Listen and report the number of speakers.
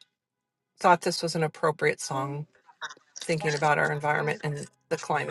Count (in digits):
1